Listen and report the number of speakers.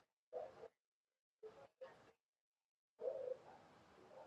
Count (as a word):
zero